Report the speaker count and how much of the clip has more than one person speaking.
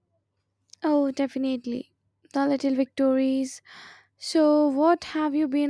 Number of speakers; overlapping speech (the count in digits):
1, no overlap